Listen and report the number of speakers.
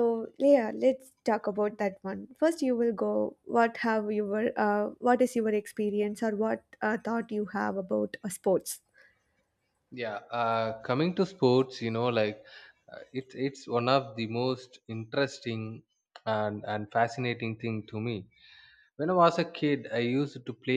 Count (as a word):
two